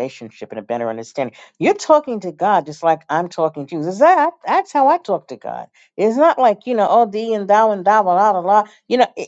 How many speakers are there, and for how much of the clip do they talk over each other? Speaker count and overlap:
1, no overlap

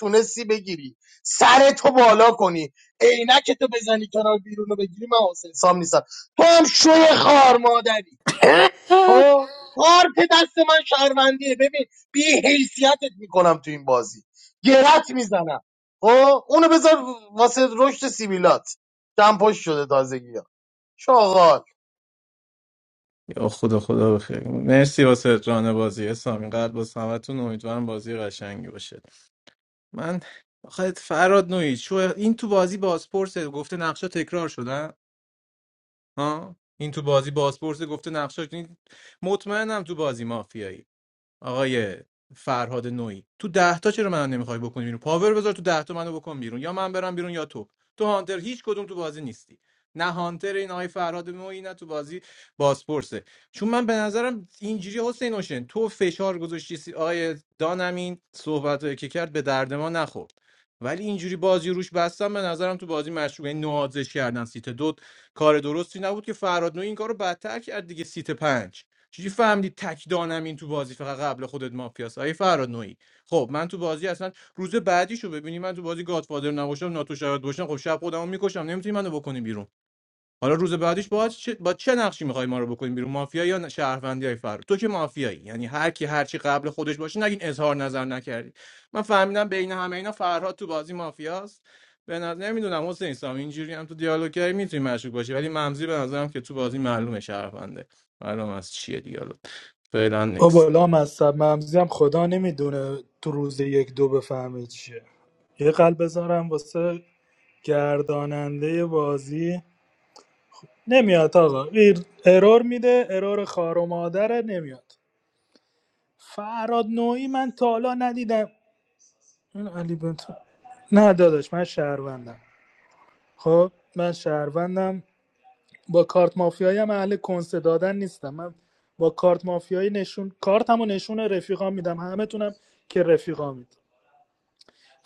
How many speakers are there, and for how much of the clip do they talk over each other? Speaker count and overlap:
3, under 1%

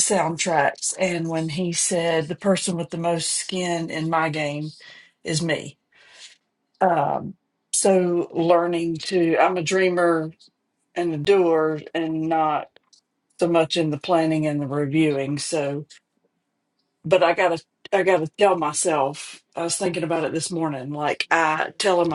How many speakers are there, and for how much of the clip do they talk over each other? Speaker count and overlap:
1, no overlap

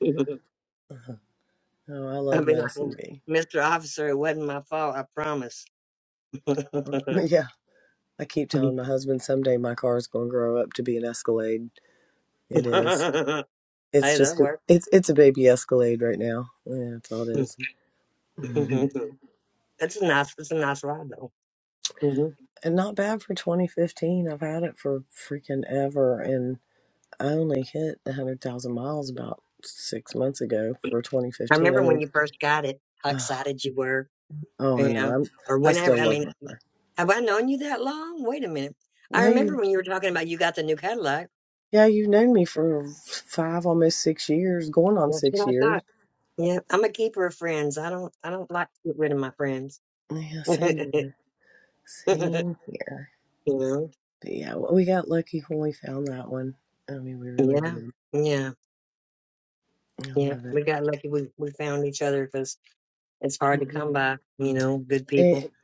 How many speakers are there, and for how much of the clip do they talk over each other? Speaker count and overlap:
2, about 10%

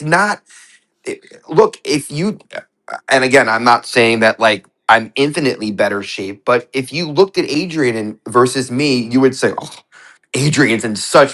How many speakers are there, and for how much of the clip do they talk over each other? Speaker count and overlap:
1, no overlap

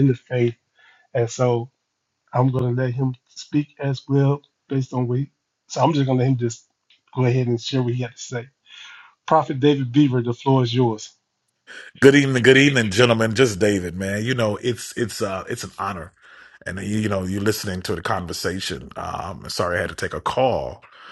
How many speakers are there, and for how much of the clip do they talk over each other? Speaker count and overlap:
2, no overlap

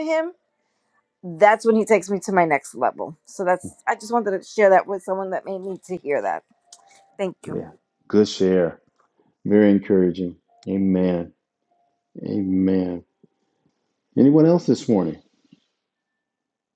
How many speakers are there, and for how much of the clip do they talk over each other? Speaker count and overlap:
2, about 1%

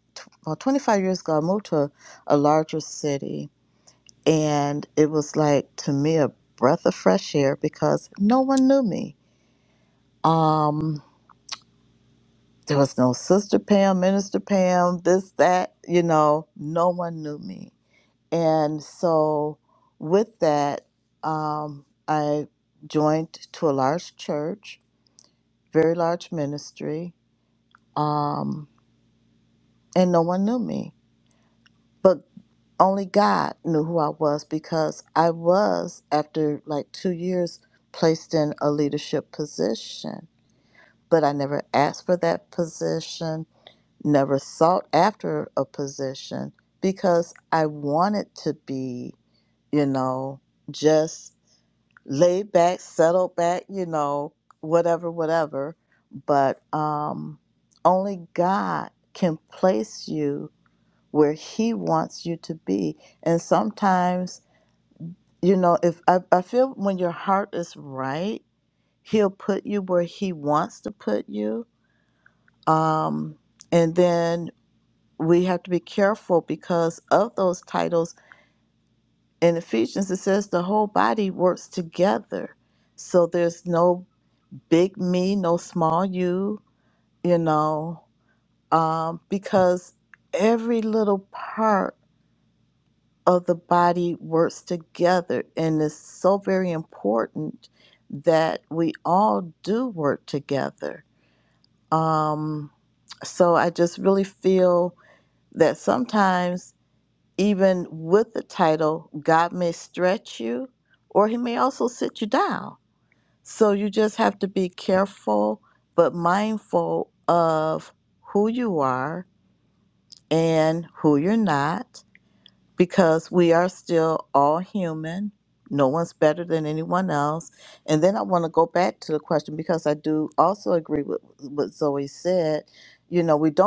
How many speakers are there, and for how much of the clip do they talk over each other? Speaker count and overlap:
1, no overlap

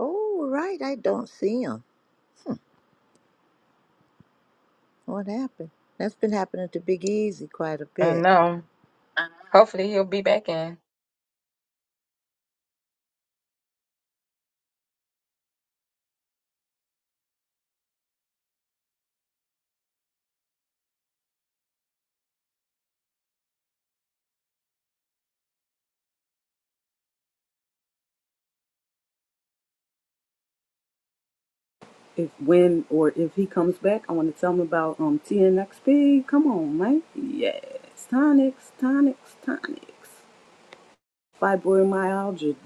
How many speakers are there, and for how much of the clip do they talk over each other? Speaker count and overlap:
3, about 1%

